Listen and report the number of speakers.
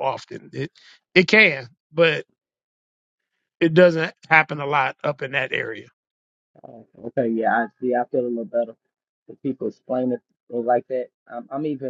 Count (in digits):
2